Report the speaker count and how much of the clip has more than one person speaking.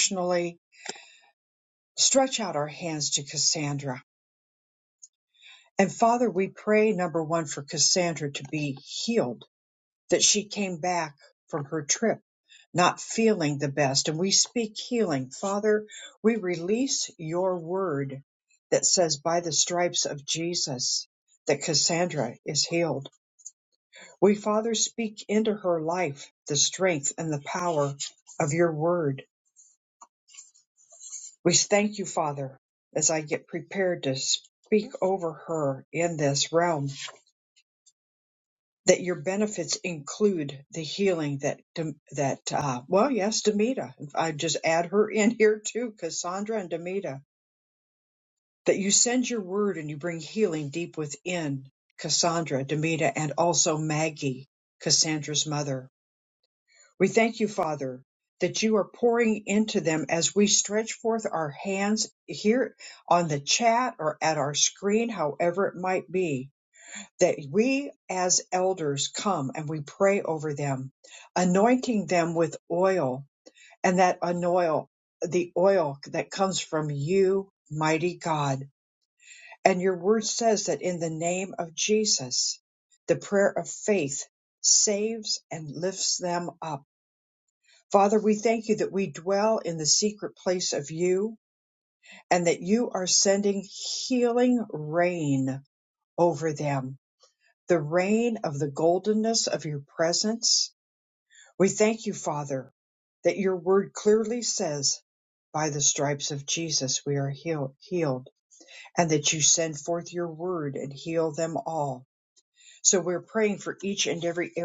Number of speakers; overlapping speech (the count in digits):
1, no overlap